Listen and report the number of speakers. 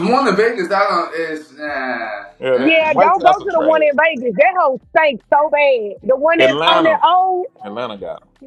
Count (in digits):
3